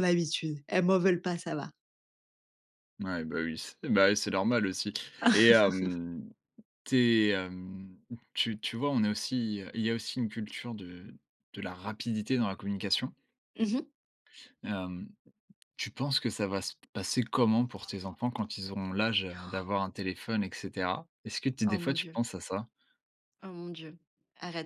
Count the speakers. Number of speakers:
two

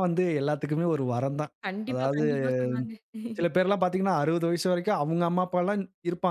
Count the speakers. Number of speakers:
two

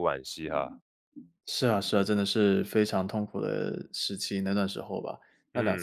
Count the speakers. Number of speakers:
two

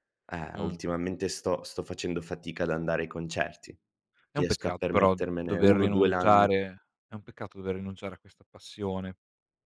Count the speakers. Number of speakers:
two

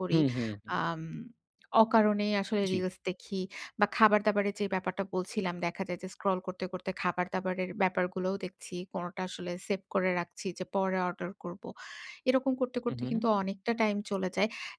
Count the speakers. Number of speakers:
two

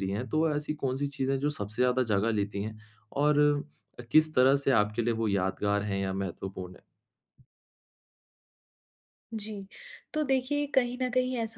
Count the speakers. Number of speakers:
two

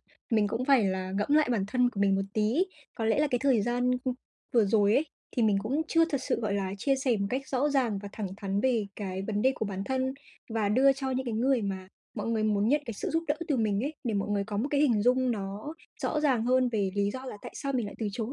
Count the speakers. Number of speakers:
one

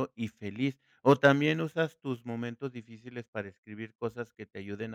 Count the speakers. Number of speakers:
one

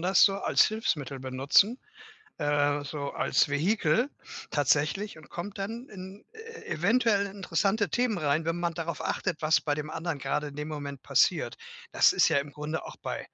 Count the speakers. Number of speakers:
one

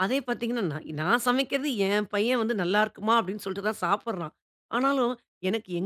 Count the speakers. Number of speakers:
one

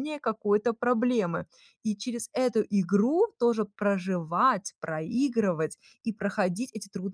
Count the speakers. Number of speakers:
one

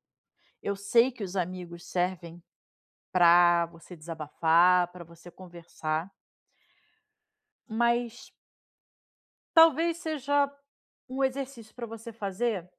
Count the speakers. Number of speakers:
one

